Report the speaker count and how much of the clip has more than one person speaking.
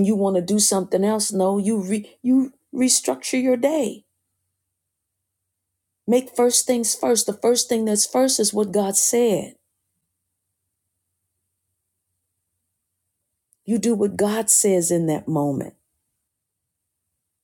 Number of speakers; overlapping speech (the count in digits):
1, no overlap